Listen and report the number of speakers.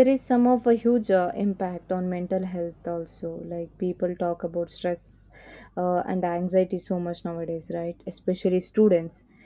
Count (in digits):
1